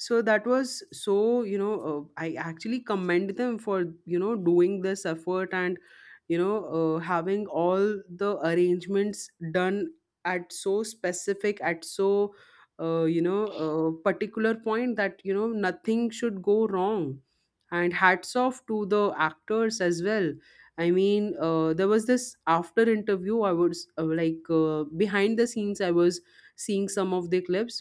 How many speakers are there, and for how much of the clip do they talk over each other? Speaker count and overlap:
1, no overlap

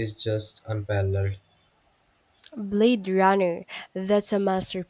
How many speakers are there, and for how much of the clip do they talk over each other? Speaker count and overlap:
2, no overlap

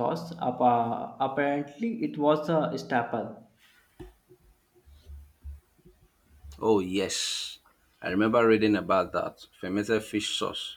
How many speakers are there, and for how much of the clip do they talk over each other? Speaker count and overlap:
2, no overlap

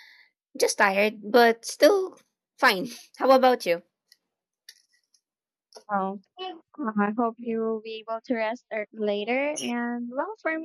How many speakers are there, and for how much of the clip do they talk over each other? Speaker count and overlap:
2, no overlap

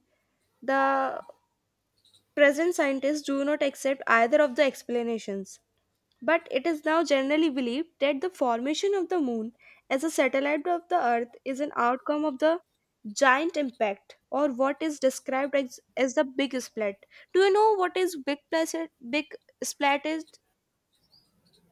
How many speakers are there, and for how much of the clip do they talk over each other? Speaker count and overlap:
1, no overlap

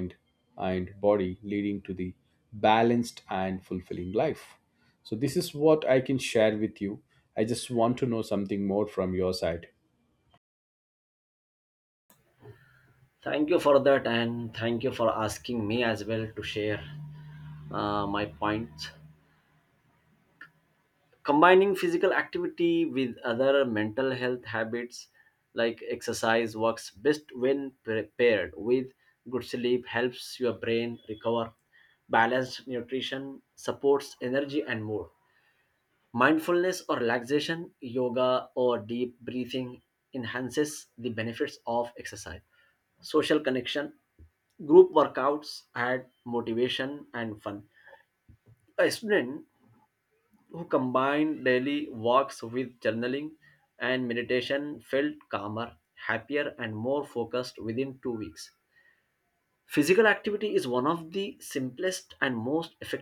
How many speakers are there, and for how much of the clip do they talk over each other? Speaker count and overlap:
2, no overlap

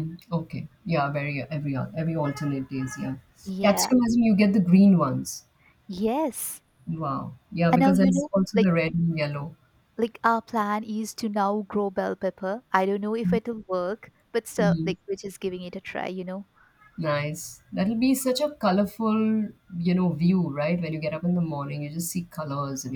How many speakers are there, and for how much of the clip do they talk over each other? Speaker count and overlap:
2, about 7%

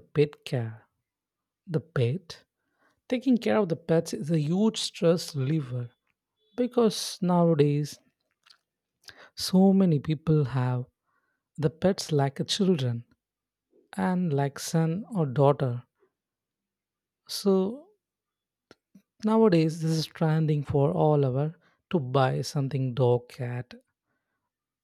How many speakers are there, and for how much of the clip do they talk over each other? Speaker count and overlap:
1, no overlap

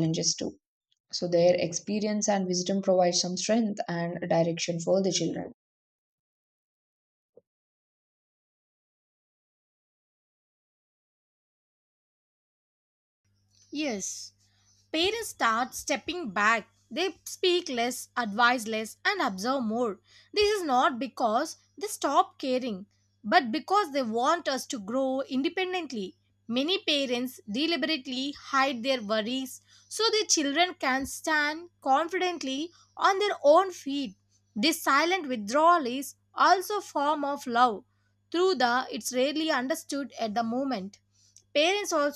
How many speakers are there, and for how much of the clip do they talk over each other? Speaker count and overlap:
2, no overlap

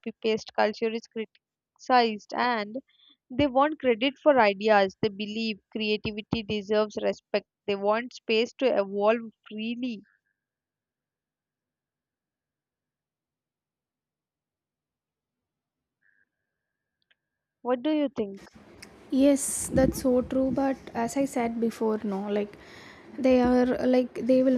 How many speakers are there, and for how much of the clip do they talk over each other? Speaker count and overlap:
2, no overlap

